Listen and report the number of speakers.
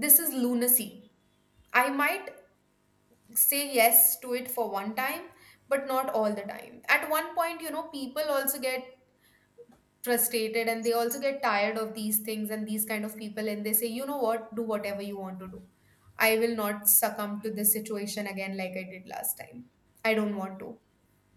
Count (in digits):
1